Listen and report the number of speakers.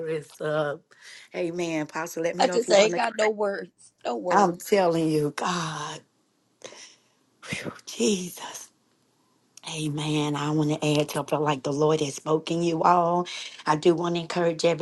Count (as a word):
two